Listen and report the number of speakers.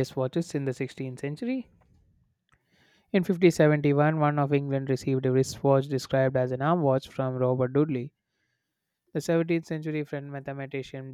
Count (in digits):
1